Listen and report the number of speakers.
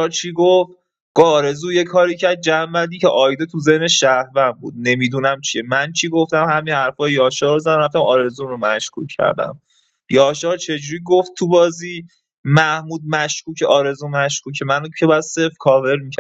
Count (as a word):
one